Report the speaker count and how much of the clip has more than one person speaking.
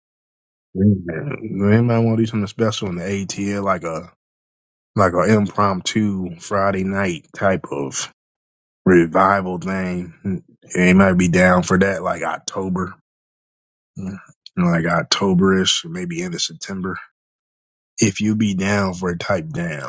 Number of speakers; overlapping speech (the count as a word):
one, no overlap